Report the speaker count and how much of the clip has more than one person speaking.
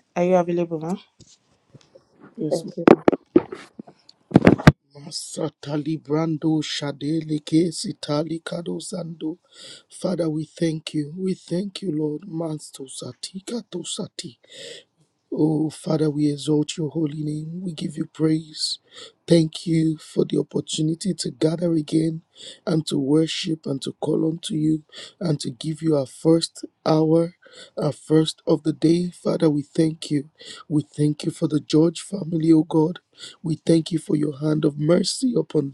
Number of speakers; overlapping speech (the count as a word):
two, about 1%